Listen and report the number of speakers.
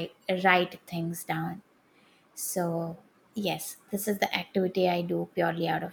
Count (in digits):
1